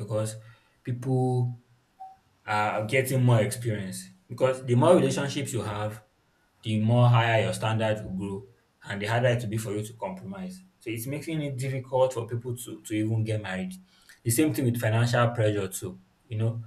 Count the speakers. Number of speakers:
one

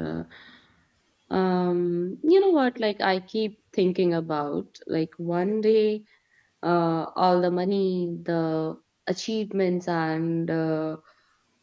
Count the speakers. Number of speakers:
one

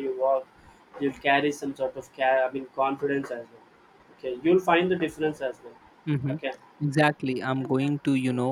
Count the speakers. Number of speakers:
two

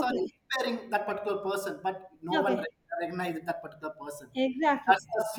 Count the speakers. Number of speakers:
two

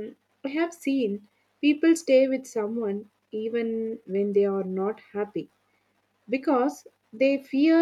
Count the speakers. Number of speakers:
one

